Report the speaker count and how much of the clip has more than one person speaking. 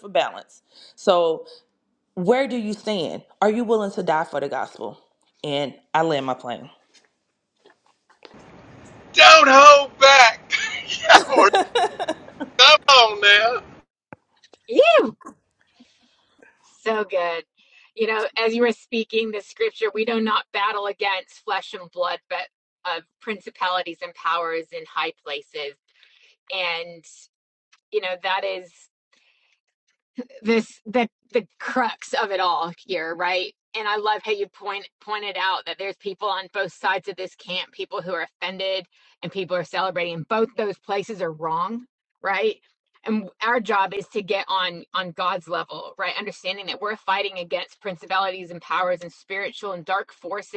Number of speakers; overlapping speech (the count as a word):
three, no overlap